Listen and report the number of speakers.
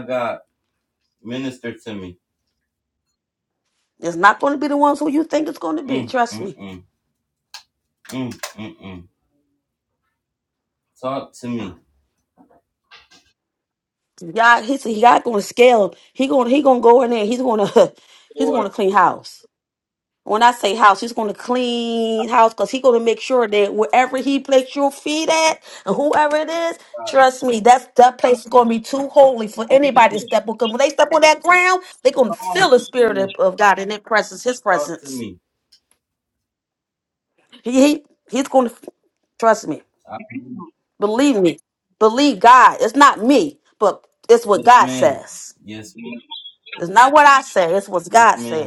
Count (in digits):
2